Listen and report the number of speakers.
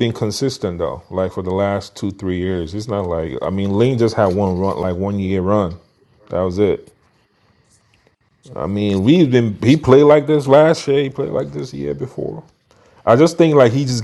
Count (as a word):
one